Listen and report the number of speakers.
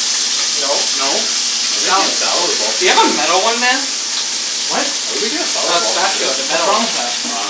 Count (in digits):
3